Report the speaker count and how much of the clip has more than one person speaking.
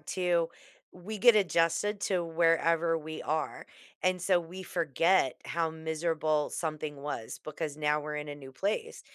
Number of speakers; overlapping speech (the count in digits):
1, no overlap